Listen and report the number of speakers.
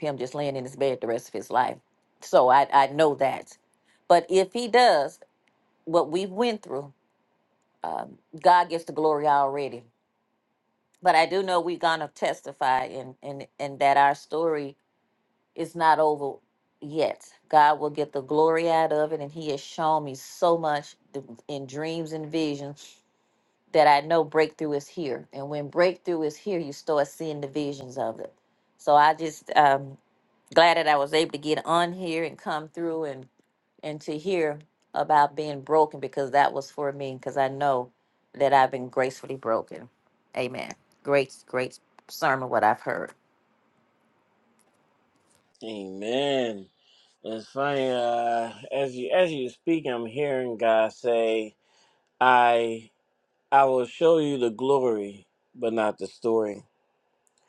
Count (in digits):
2